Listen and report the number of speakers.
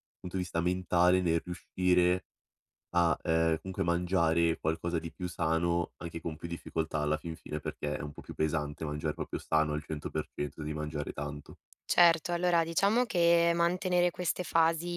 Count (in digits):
2